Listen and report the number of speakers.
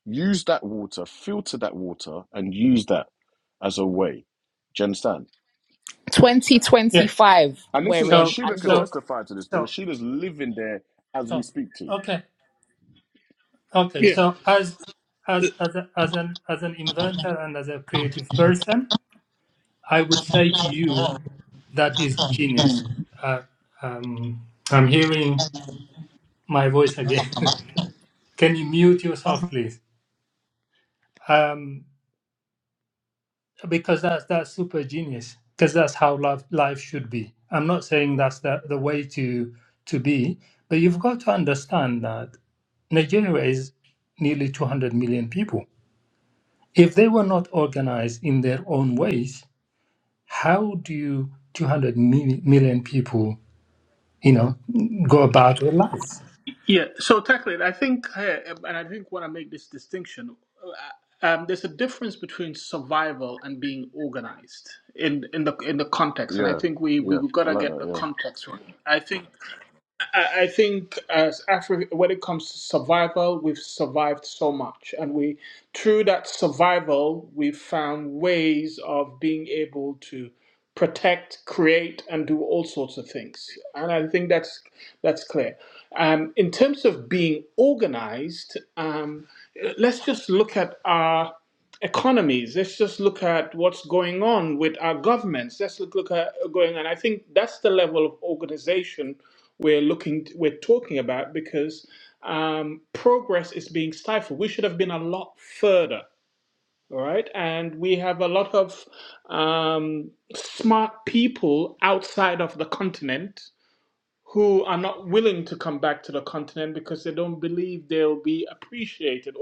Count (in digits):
4